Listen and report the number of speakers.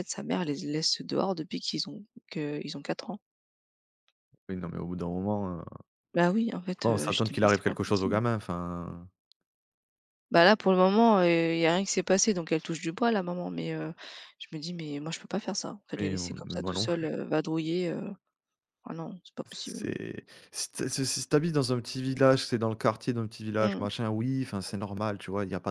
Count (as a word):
two